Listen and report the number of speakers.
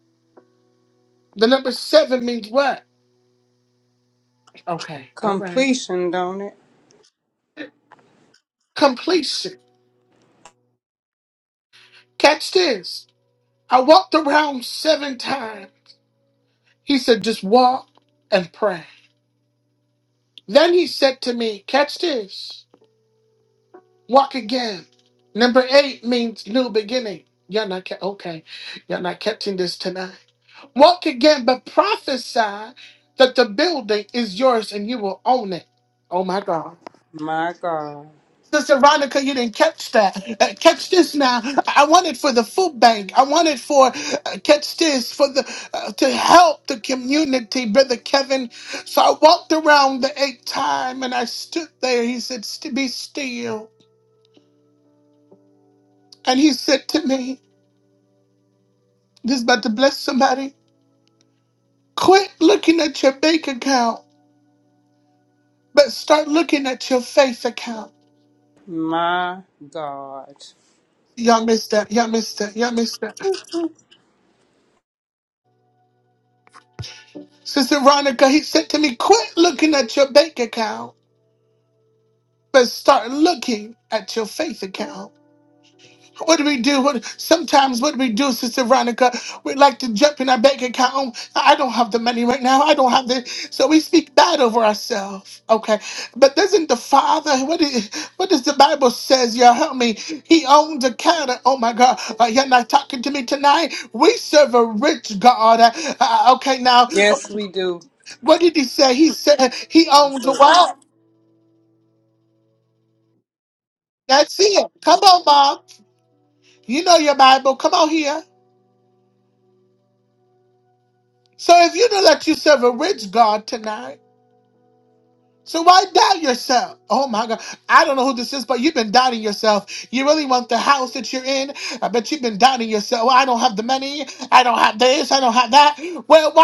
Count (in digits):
2